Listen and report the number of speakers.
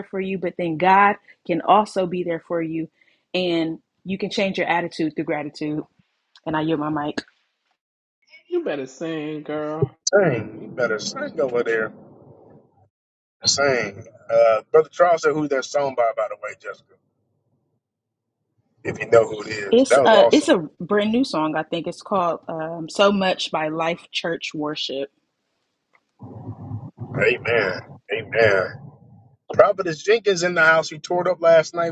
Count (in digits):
3